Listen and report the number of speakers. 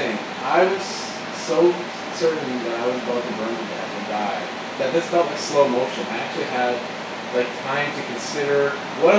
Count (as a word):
one